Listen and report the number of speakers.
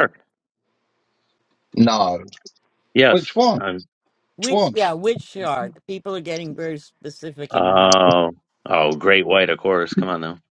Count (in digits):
3